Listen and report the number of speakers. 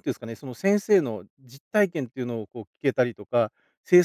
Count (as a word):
one